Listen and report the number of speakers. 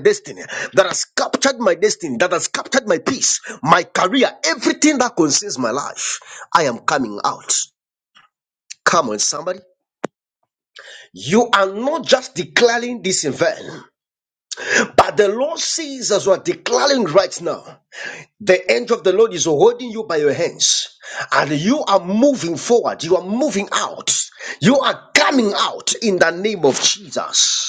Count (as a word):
one